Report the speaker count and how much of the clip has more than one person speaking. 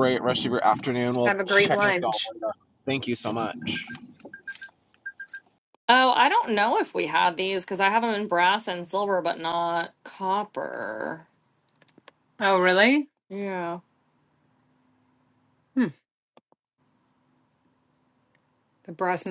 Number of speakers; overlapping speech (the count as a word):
three, about 5%